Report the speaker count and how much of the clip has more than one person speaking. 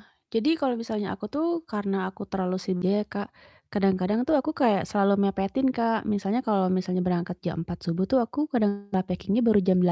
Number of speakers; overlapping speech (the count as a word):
one, no overlap